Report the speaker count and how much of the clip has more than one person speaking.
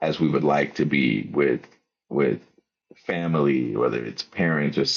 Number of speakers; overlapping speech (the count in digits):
1, no overlap